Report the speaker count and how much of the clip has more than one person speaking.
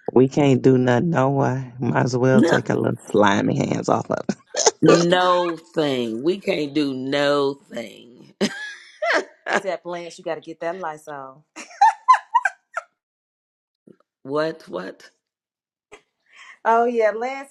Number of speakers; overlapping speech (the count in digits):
3, about 2%